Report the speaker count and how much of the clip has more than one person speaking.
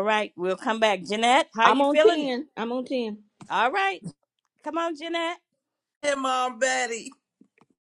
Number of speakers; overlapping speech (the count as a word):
three, about 8%